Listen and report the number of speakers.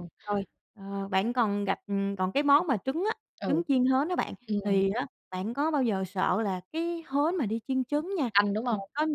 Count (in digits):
2